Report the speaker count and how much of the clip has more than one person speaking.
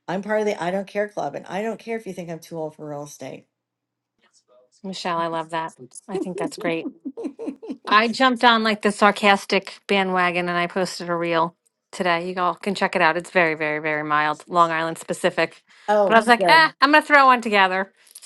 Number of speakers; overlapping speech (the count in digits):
2, about 3%